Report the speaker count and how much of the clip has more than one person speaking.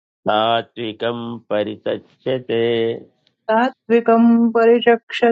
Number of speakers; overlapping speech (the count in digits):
2, no overlap